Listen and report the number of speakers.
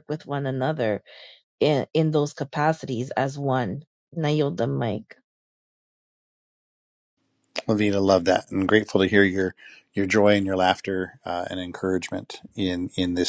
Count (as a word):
two